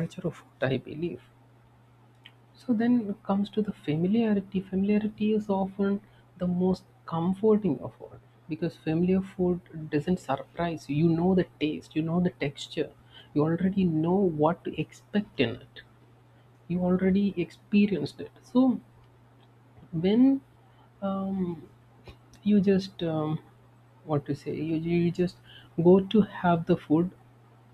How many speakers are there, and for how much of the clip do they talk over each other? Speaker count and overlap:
one, no overlap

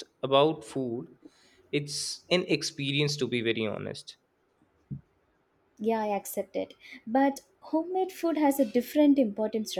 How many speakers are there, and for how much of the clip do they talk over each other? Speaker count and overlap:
two, no overlap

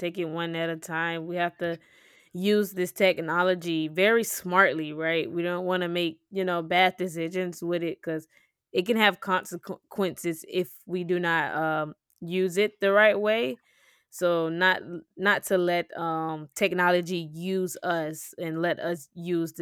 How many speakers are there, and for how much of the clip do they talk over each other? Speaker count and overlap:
one, no overlap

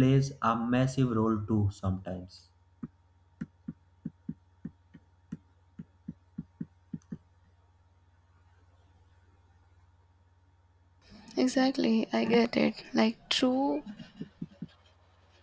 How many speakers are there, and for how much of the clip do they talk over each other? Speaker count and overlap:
two, no overlap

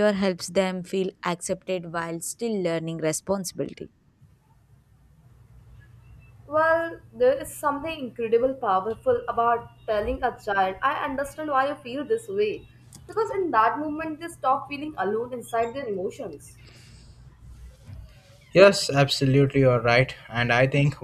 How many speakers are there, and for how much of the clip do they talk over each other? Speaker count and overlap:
three, no overlap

